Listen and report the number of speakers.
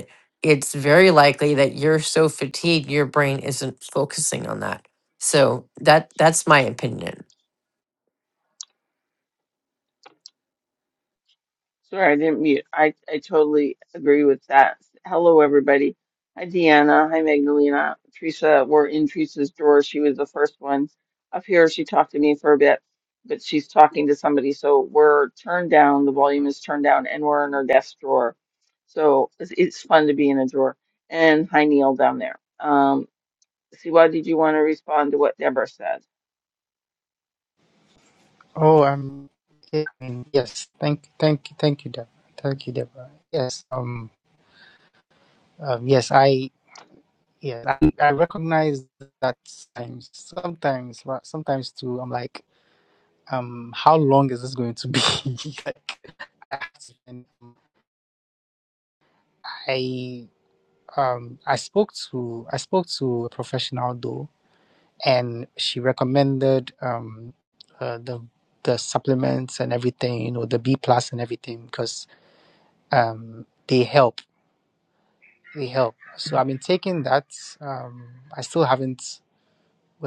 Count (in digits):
3